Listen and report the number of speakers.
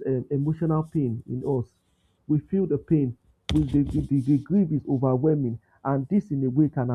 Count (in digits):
1